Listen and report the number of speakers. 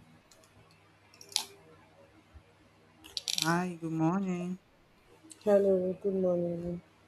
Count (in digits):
2